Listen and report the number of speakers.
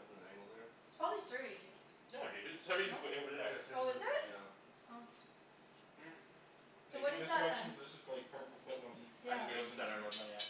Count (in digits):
4